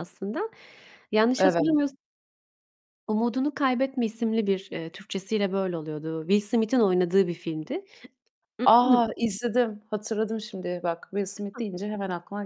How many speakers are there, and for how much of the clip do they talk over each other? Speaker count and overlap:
2, about 3%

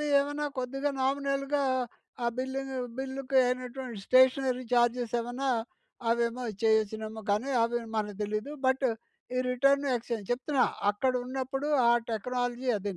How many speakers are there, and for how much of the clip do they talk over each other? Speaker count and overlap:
1, no overlap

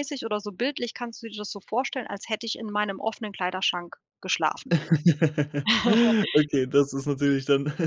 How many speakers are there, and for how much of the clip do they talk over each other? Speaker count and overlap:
2, no overlap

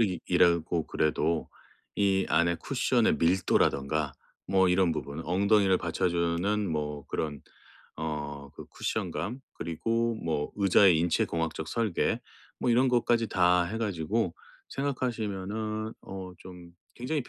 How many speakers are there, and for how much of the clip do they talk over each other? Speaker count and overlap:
1, no overlap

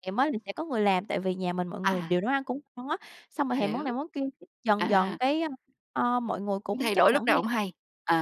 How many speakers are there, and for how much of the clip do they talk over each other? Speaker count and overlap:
2, about 22%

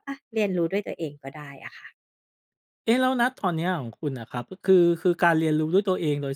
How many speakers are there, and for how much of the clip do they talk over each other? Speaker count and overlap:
2, no overlap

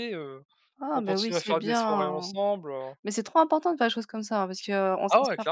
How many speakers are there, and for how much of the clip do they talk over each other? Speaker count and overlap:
2, about 33%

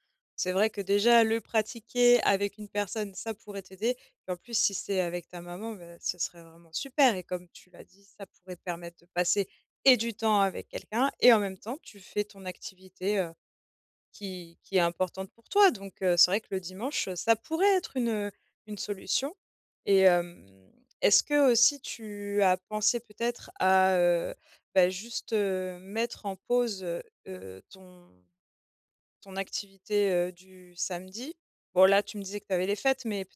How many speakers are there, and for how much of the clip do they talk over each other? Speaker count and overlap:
1, no overlap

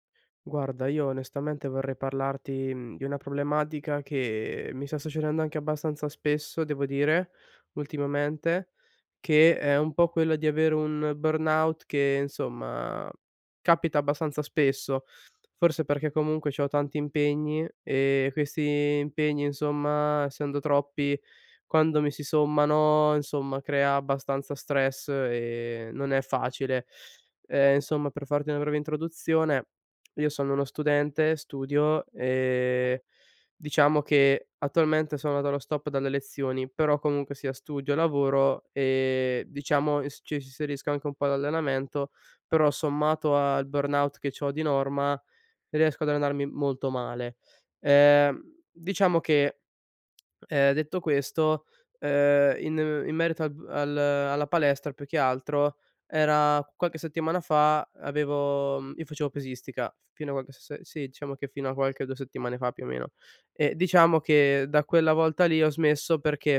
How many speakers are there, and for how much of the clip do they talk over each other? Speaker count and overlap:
1, no overlap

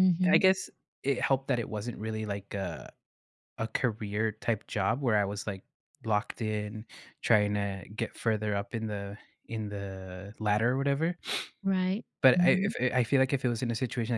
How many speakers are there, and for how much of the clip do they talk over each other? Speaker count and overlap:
2, about 4%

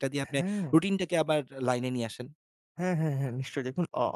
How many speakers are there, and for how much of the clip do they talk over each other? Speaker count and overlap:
2, about 12%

